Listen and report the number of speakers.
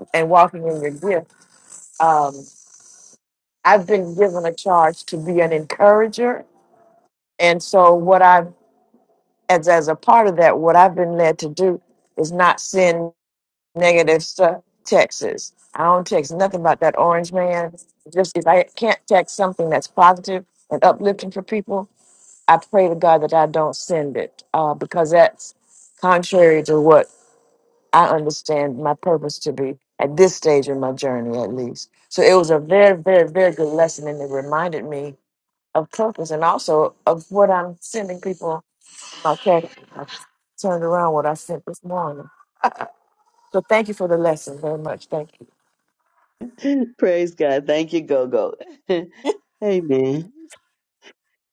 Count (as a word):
two